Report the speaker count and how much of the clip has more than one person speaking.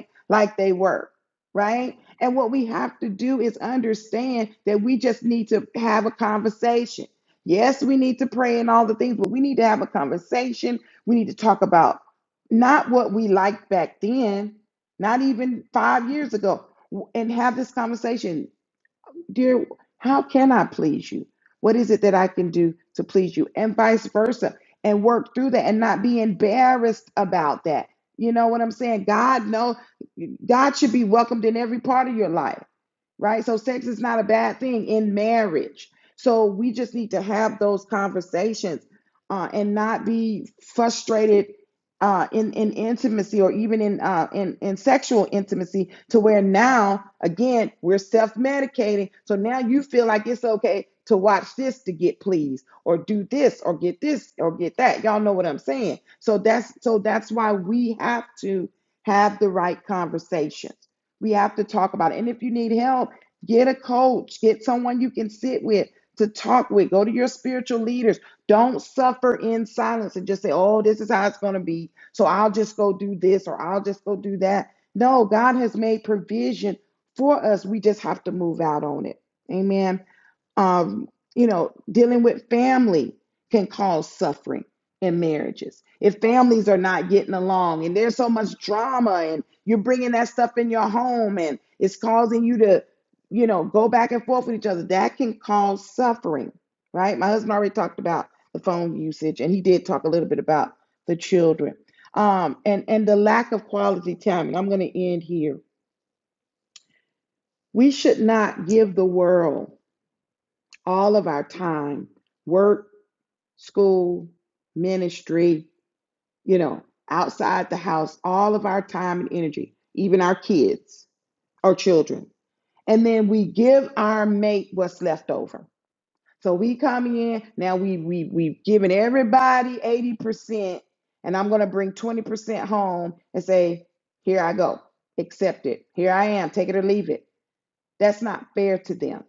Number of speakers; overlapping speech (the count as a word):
one, no overlap